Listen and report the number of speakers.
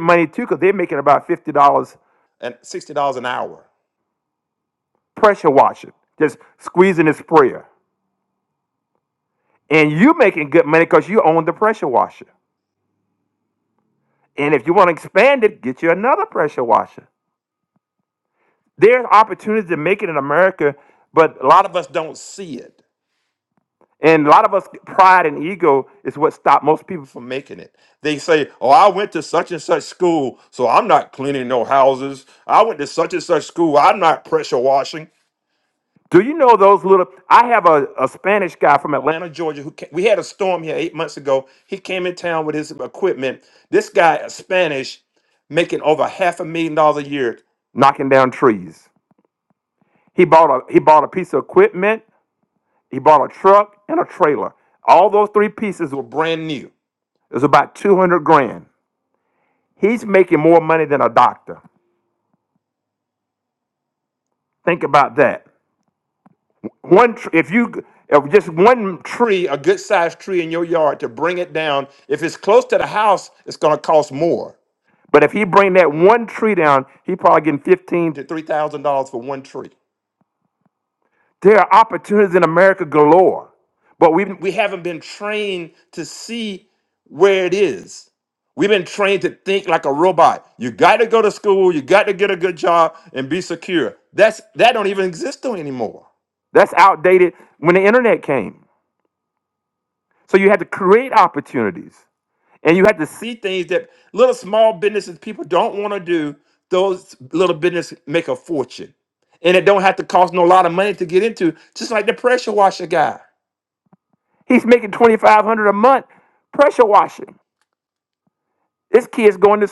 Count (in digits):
1